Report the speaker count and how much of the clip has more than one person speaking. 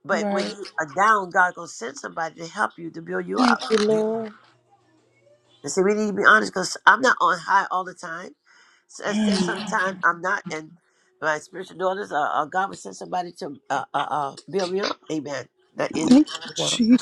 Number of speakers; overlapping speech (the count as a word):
two, about 13%